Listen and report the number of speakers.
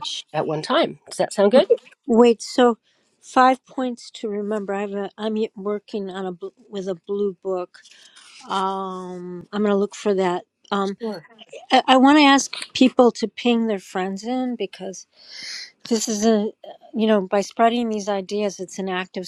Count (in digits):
2